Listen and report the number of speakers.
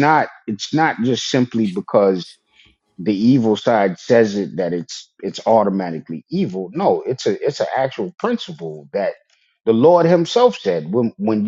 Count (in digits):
1